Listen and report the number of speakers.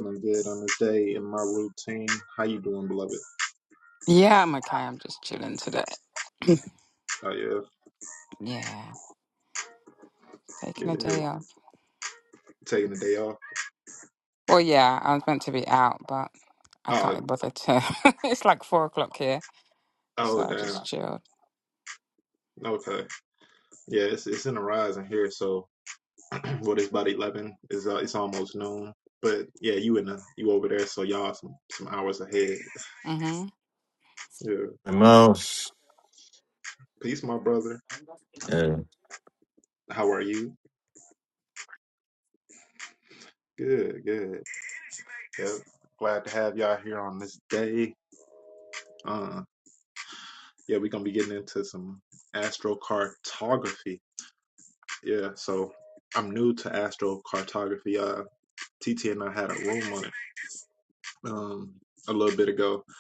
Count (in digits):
3